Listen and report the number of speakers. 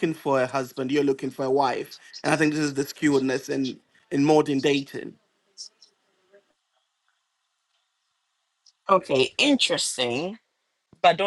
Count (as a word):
two